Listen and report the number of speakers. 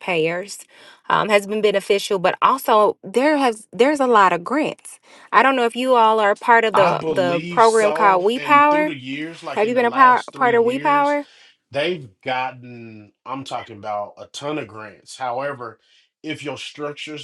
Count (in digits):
2